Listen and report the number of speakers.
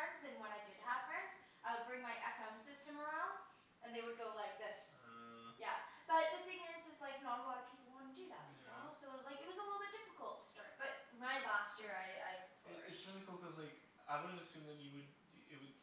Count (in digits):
2